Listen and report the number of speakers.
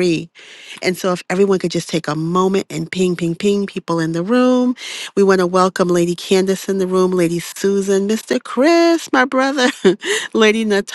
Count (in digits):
1